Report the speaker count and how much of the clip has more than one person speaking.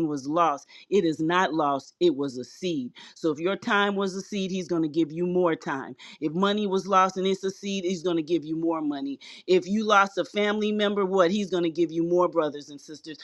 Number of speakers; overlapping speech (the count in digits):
1, no overlap